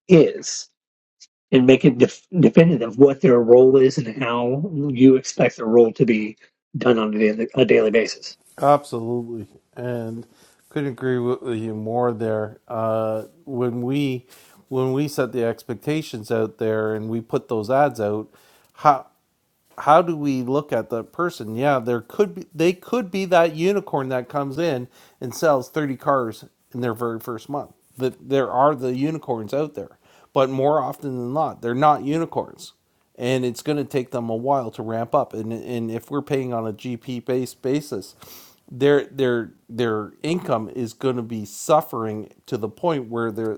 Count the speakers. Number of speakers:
2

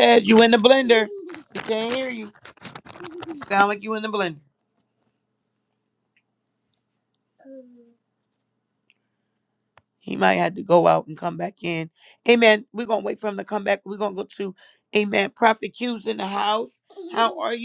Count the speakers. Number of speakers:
1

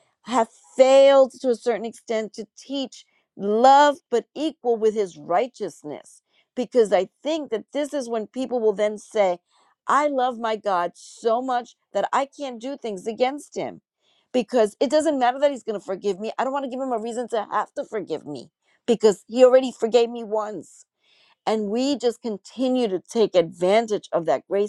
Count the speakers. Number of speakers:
1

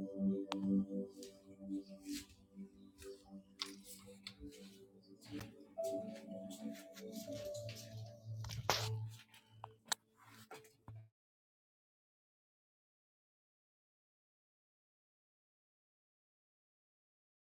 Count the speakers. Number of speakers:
0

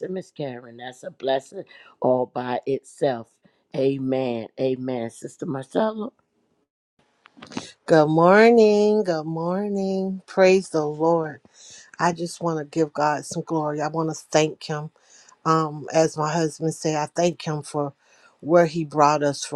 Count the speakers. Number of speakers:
2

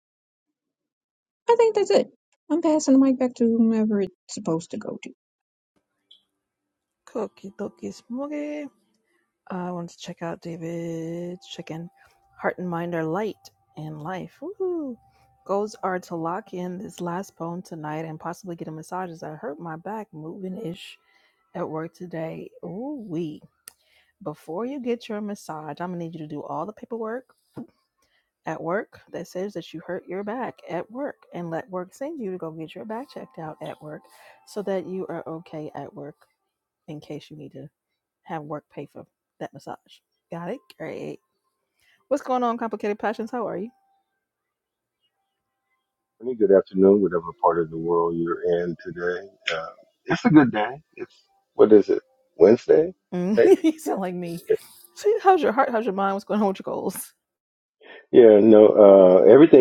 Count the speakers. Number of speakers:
3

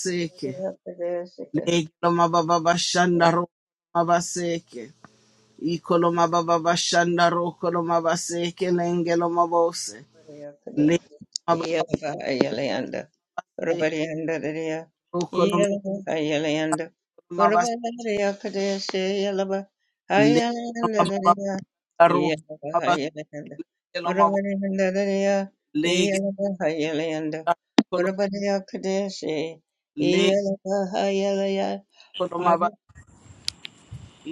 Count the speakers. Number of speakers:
2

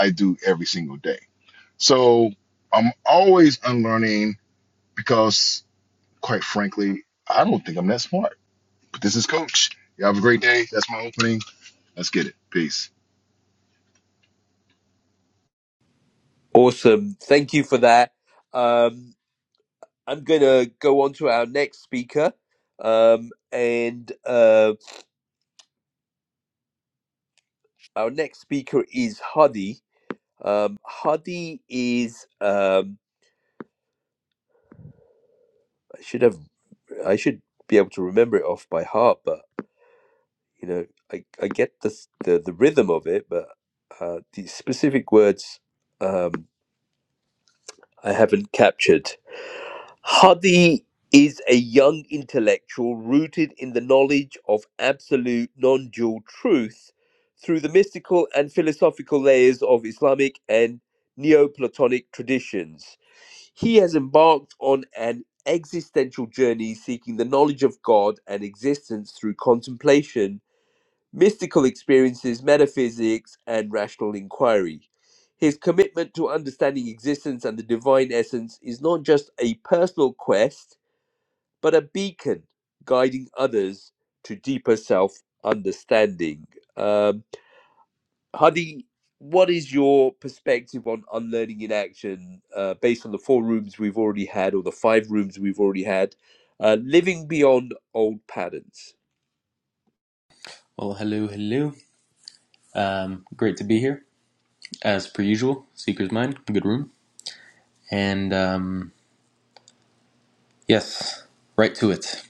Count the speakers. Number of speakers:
3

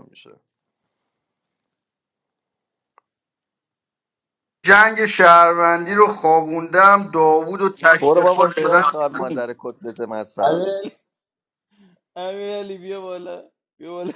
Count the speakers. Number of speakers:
3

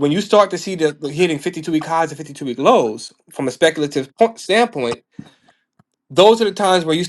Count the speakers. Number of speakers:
1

